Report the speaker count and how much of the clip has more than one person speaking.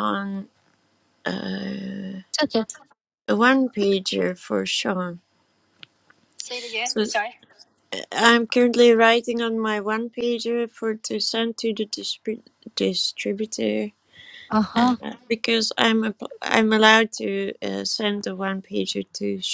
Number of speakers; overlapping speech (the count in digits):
2, about 2%